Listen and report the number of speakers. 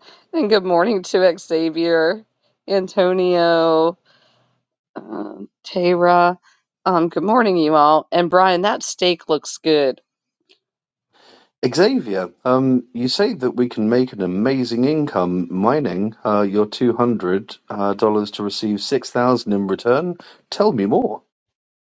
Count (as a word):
two